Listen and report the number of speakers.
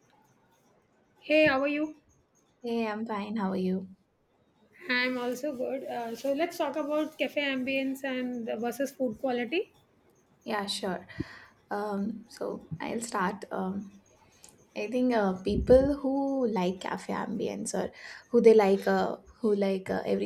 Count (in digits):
2